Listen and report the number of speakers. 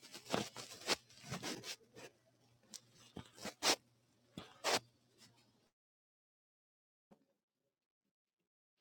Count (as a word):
zero